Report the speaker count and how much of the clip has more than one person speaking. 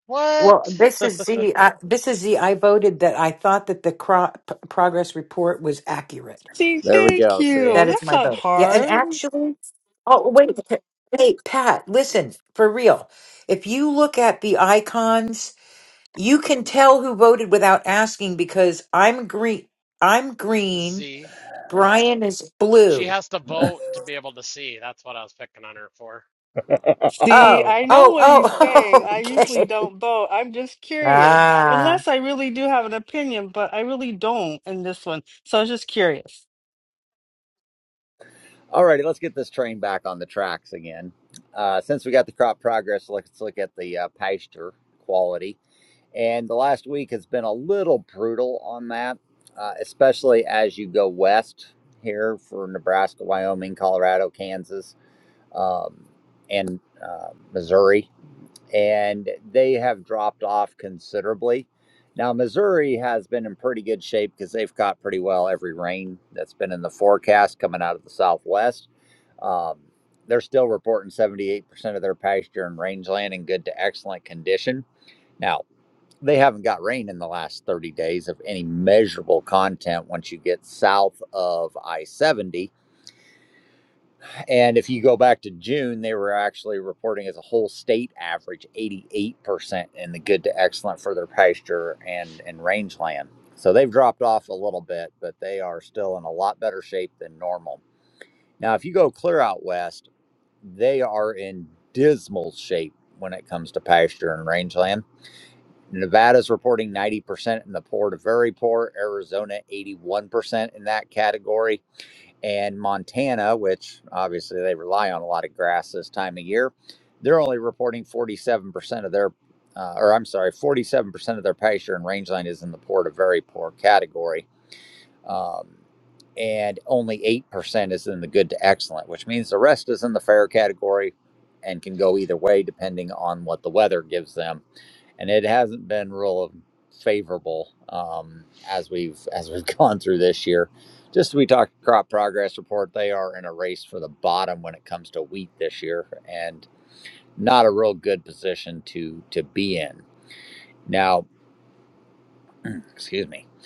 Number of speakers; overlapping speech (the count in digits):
4, about 4%